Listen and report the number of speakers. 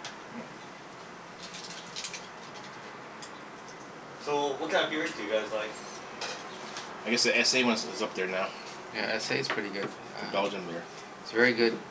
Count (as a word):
three